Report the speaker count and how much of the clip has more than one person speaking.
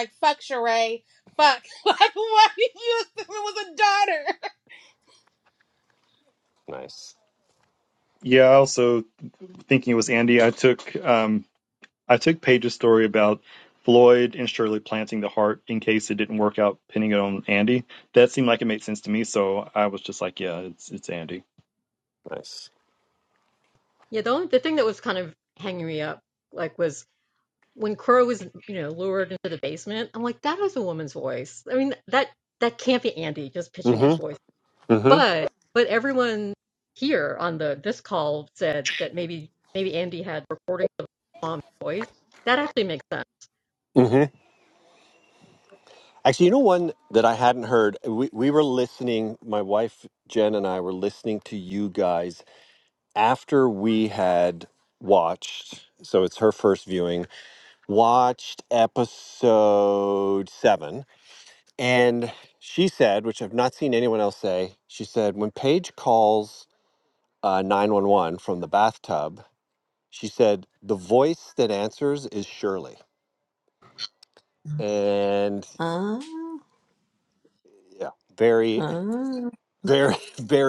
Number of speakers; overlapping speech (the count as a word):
five, about 1%